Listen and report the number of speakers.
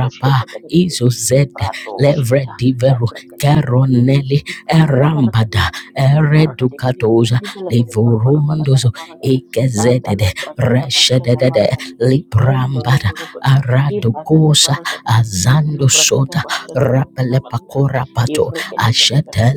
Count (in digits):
2